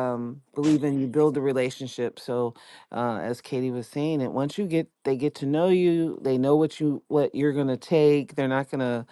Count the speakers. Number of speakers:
one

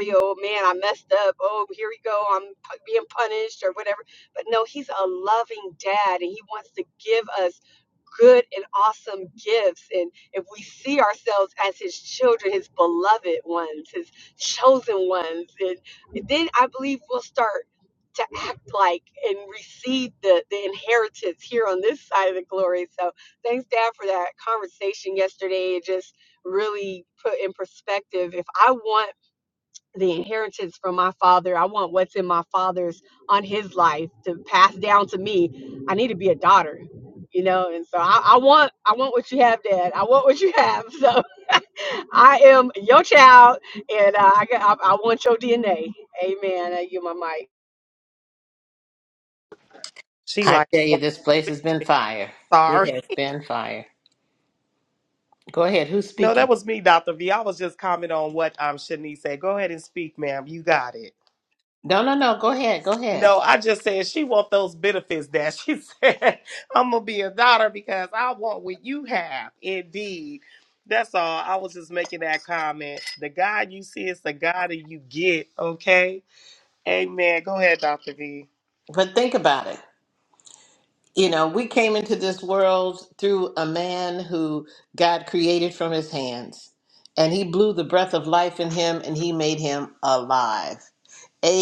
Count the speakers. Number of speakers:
three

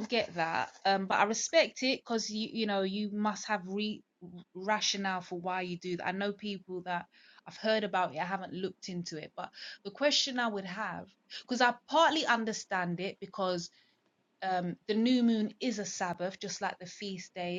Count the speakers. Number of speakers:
one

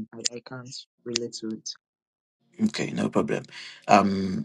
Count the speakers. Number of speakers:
two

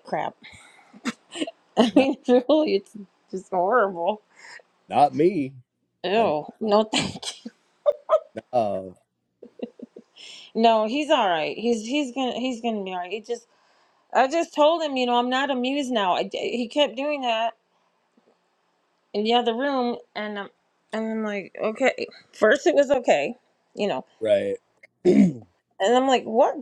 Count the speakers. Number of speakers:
two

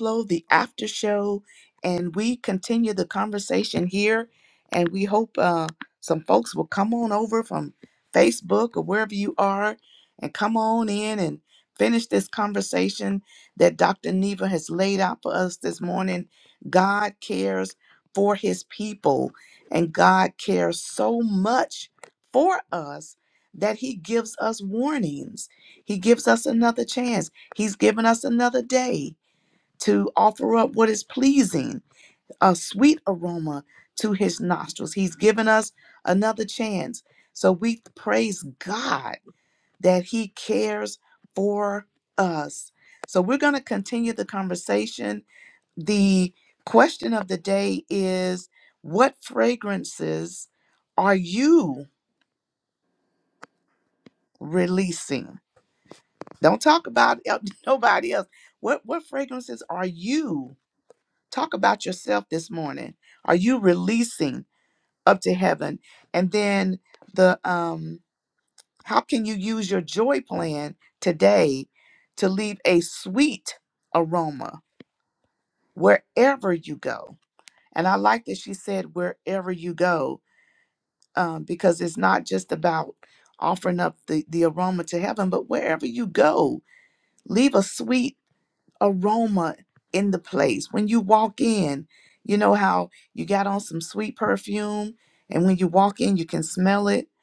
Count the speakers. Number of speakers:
one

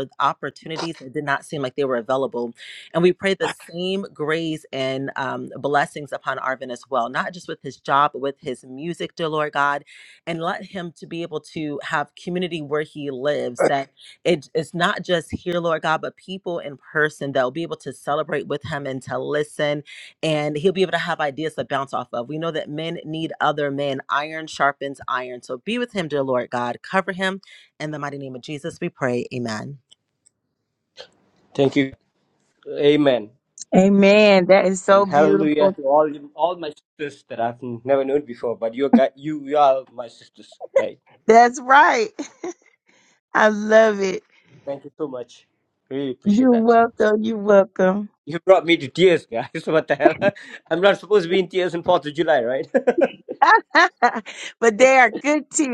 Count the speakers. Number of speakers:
three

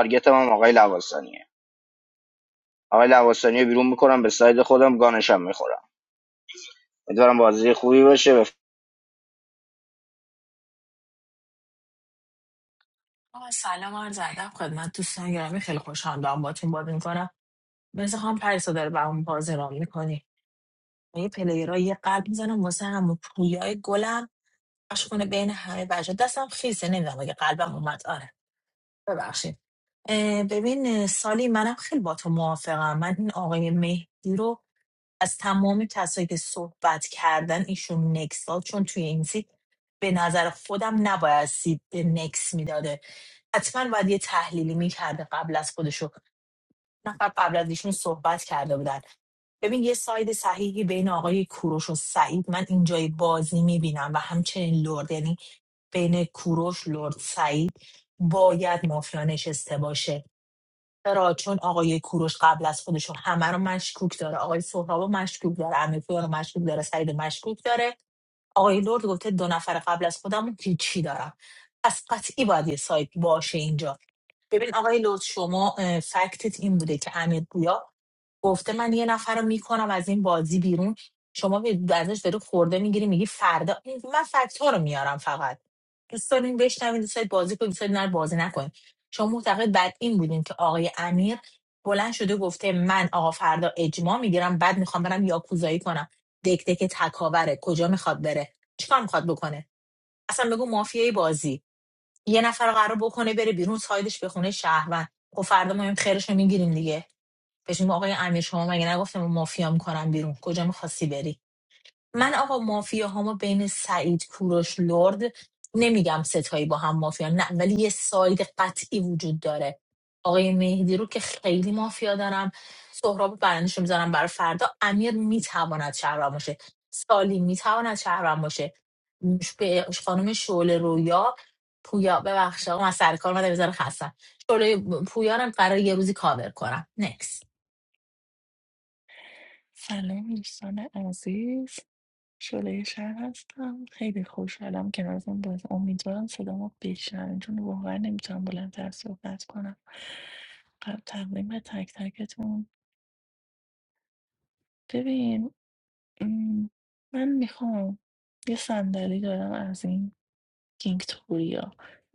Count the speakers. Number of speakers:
three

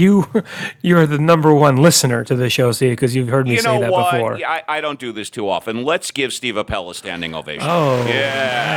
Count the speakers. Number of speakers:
two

